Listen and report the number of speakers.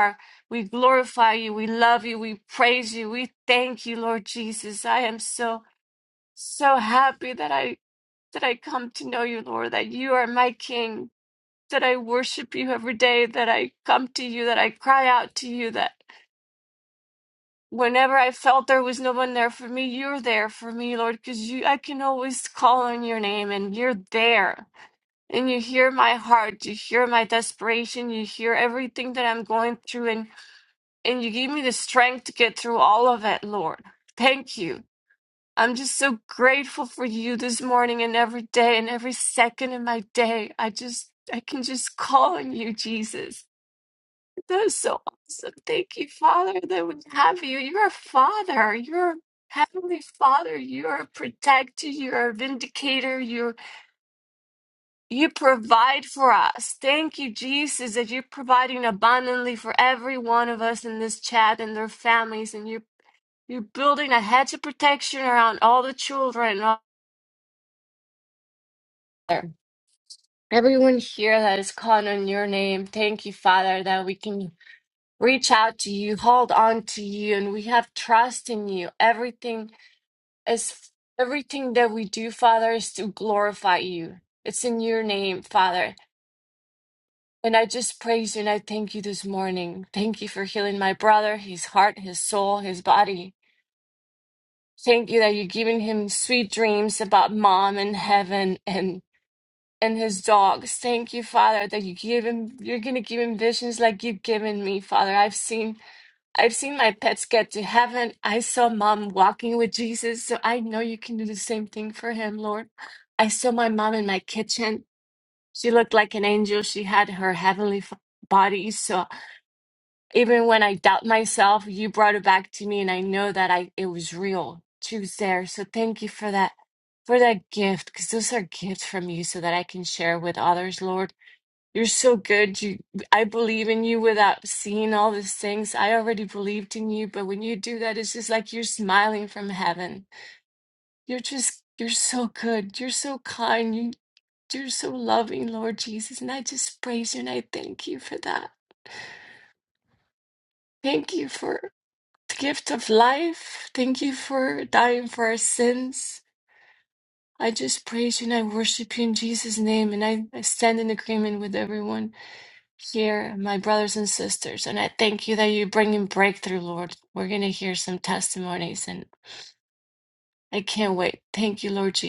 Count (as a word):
one